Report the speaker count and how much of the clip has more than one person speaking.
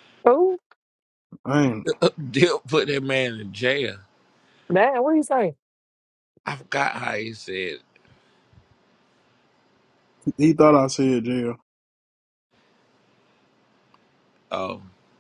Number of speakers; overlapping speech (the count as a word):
three, no overlap